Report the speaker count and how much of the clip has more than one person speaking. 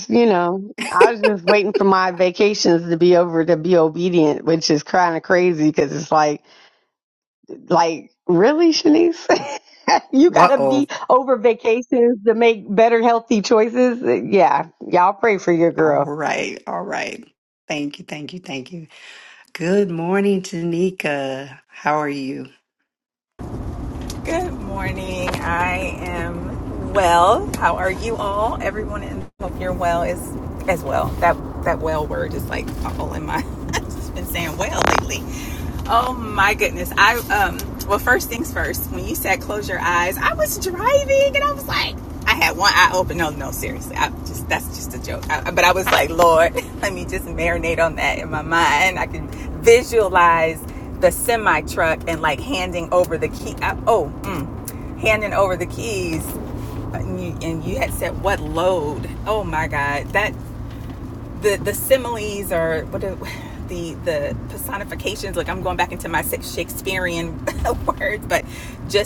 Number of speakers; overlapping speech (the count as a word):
three, about 1%